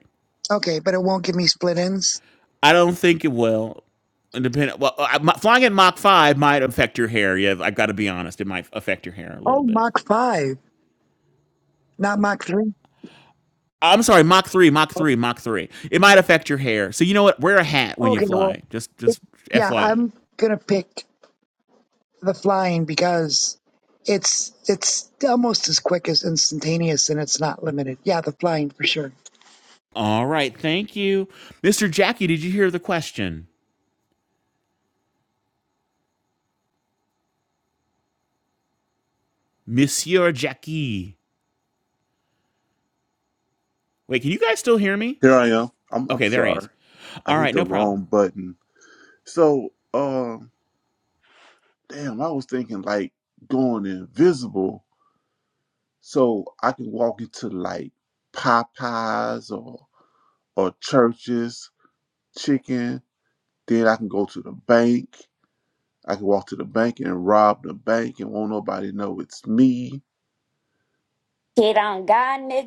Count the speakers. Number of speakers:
four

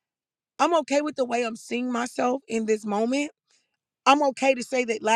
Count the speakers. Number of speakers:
one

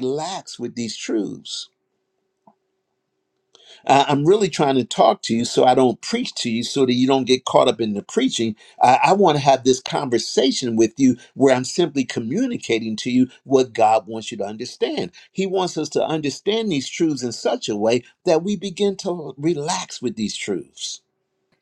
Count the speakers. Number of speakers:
one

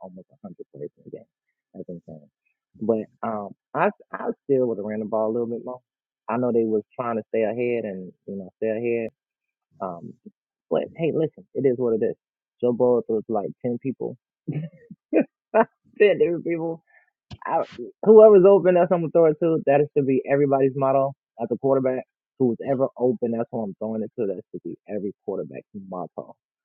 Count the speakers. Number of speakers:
one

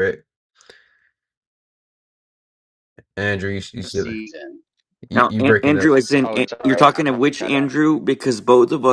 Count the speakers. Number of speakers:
three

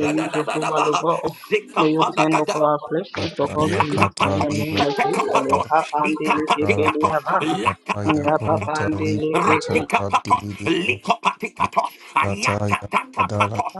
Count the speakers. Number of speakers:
three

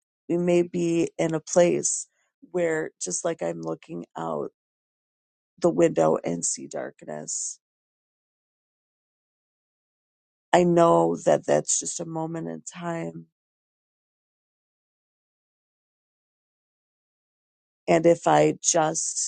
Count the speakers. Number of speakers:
one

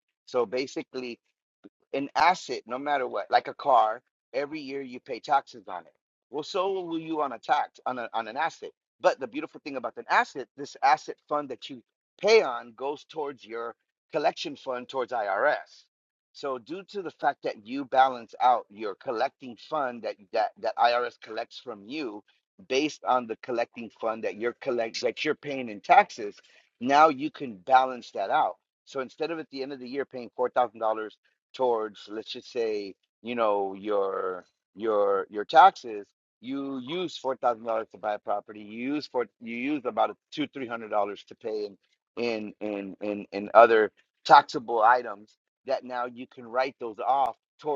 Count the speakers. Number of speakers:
one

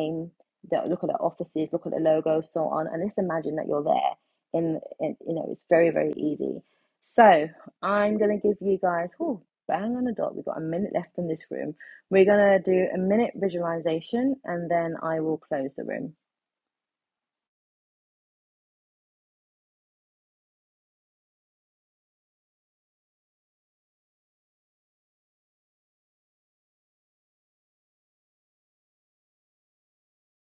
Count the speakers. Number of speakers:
one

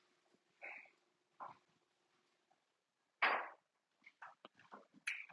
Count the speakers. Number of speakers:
zero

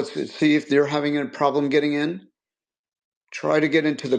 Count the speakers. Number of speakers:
one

